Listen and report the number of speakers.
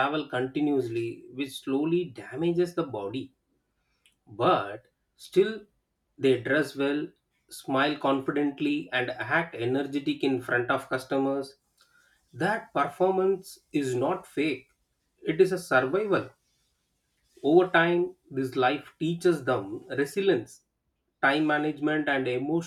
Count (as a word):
one